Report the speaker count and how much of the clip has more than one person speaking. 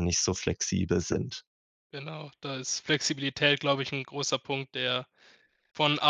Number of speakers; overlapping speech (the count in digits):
2, no overlap